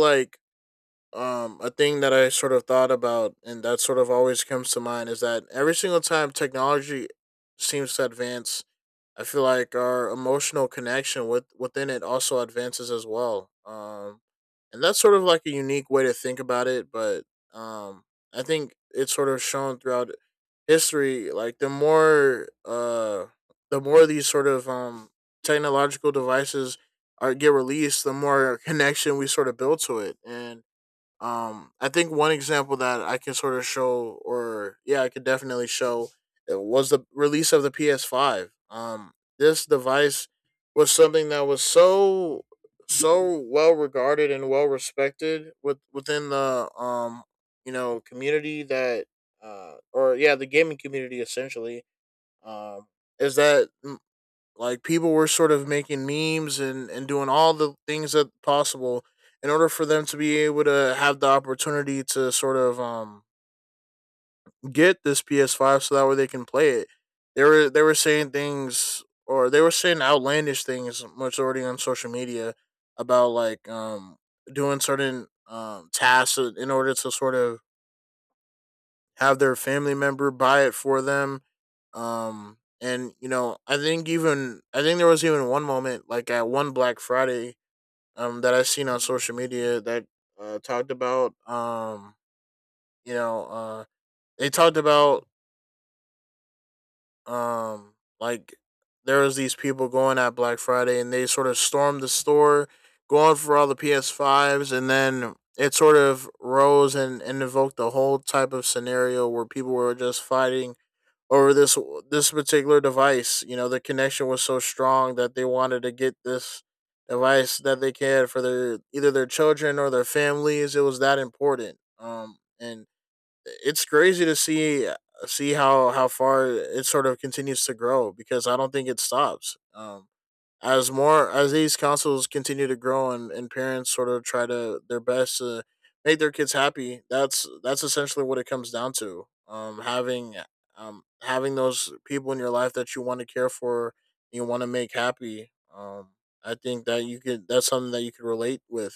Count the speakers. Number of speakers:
one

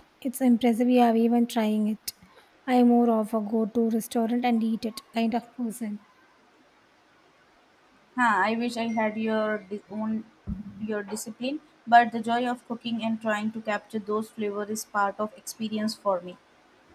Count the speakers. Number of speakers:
two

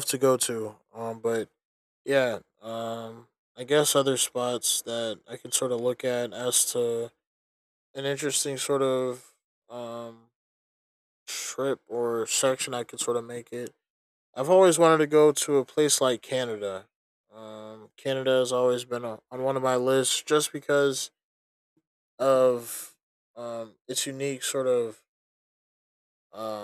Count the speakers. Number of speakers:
one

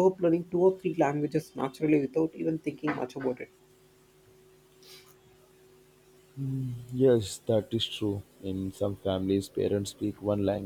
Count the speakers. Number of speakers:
two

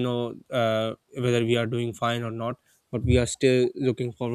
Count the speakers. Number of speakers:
one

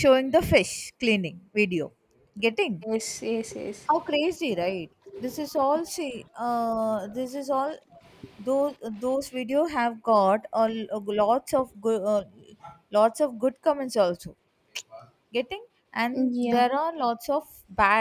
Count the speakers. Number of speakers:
two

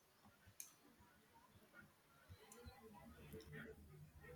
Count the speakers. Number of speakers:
zero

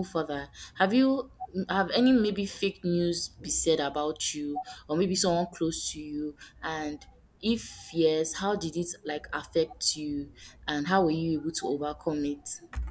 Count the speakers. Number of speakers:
one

